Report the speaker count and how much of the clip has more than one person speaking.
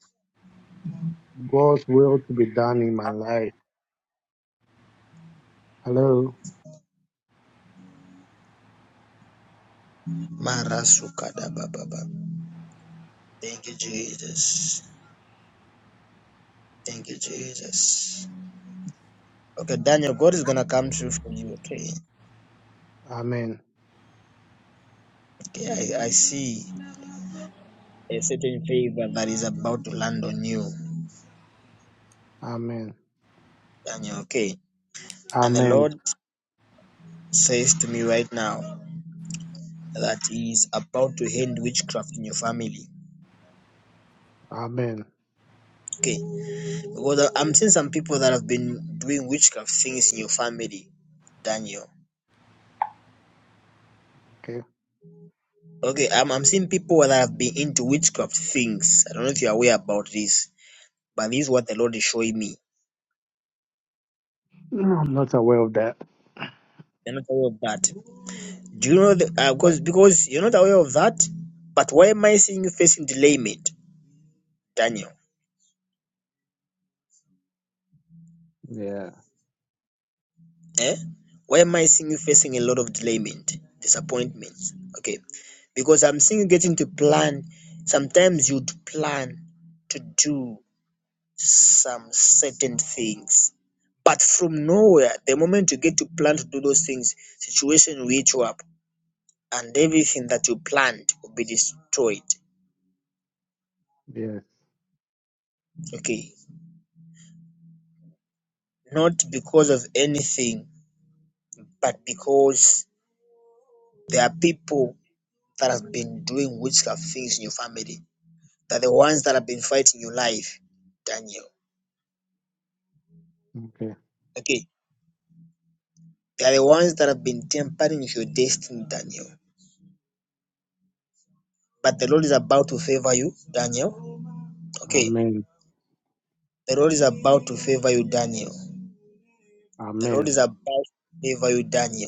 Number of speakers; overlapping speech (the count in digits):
2, about 1%